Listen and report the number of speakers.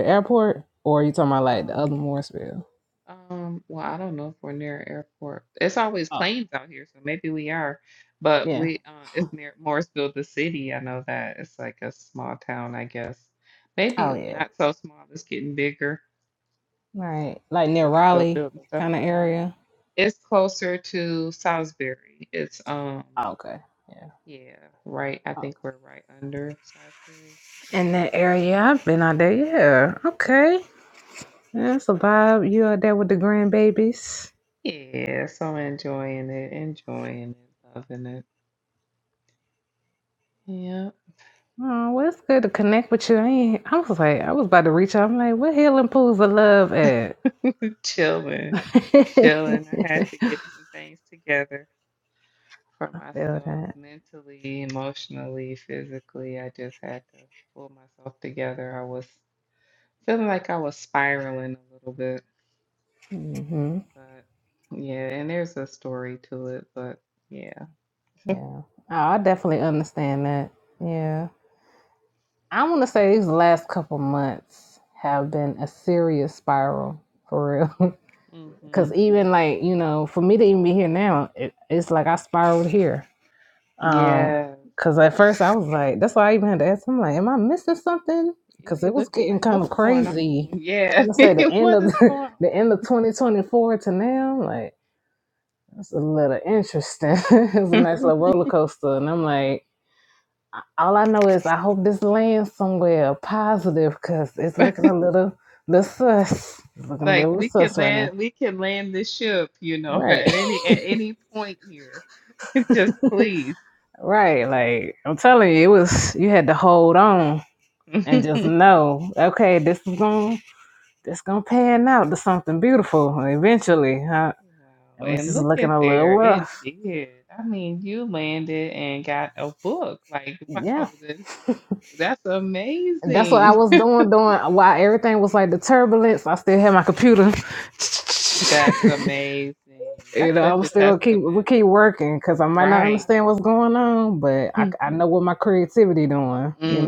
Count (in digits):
2